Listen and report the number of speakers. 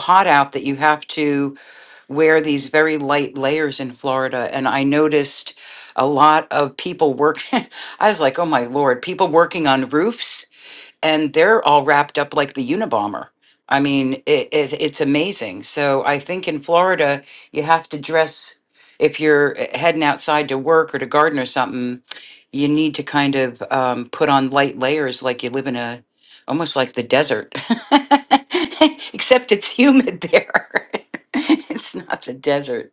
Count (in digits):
1